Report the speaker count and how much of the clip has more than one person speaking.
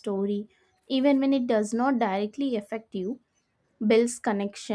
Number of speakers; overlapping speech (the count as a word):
one, no overlap